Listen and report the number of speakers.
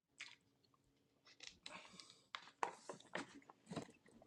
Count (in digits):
0